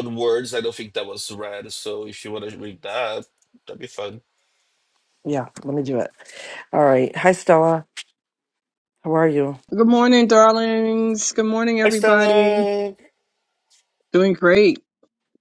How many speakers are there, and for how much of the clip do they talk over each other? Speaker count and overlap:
3, about 5%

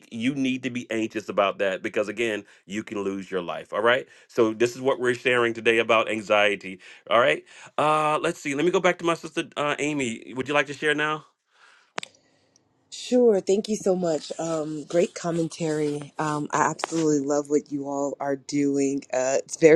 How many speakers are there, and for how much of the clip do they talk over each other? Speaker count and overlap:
2, no overlap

